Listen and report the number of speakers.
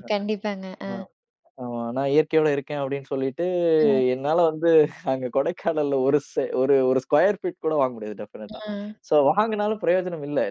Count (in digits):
2